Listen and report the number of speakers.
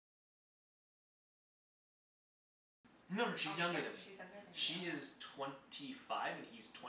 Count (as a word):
two